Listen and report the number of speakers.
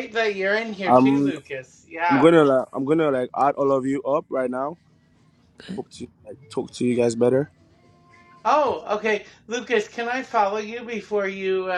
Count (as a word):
two